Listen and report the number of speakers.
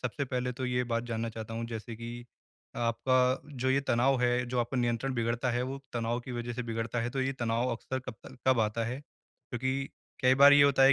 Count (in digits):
1